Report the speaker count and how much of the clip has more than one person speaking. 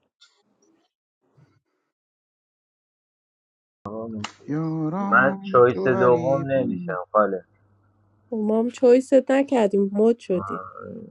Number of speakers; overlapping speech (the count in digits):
3, about 19%